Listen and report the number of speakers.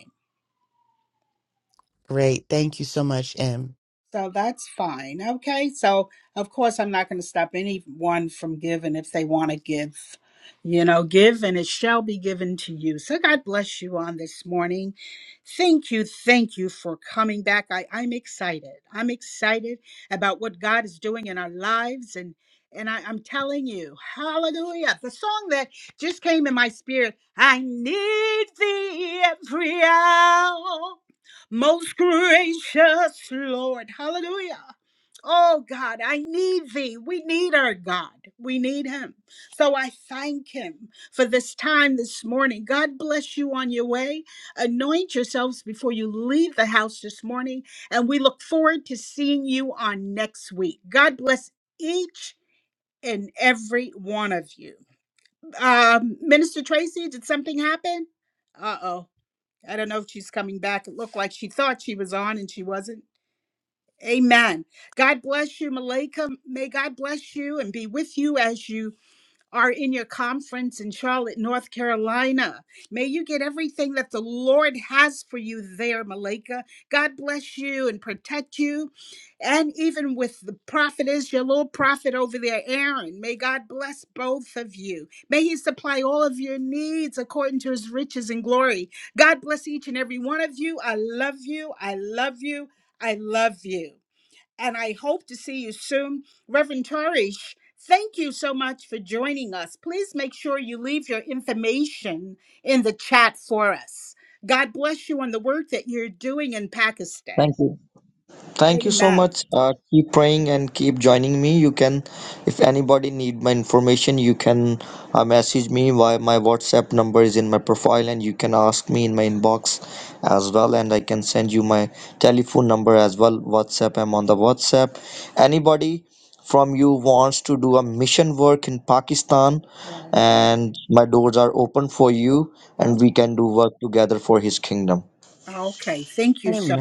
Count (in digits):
3